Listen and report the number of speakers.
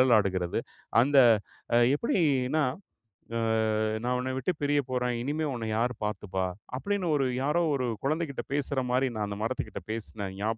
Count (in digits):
1